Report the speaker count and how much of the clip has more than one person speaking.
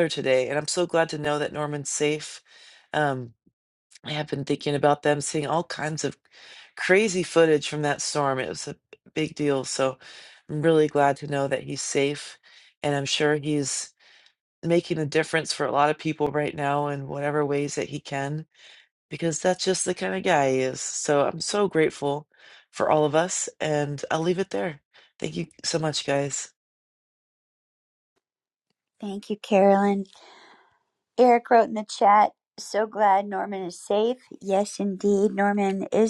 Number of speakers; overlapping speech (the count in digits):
2, no overlap